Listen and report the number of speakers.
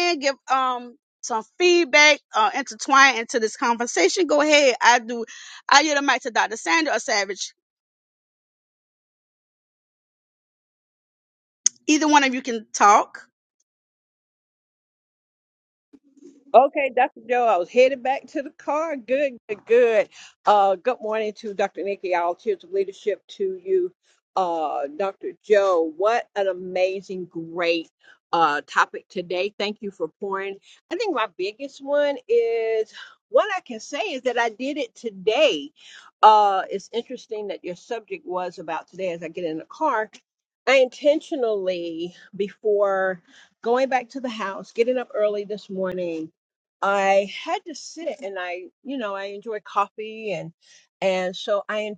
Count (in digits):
2